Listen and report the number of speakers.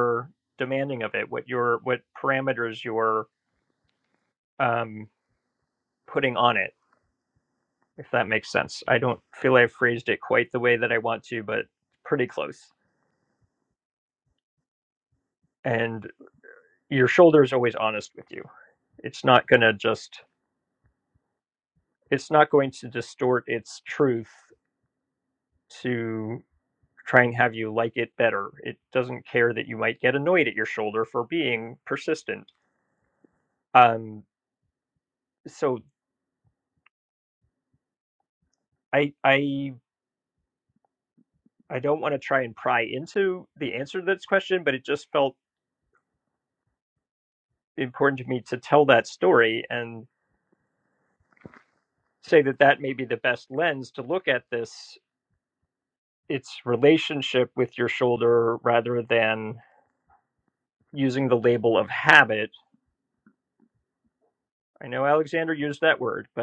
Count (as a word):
one